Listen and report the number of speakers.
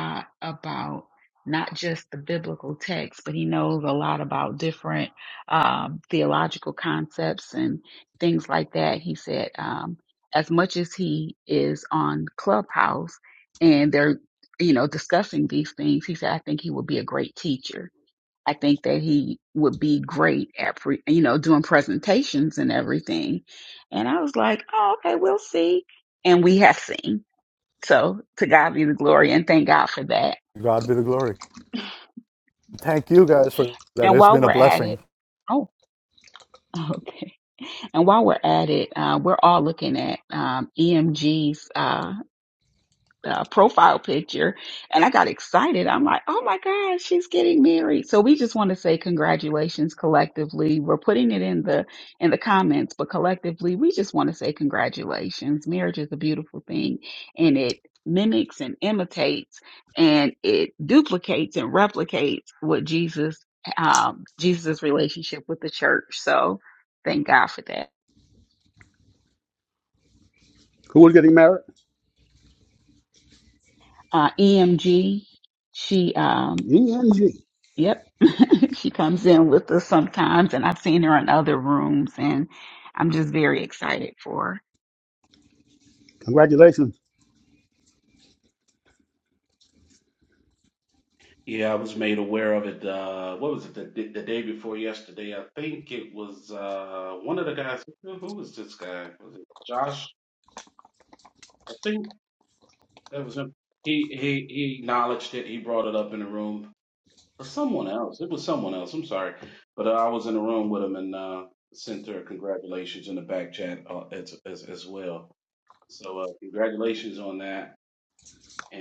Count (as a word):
four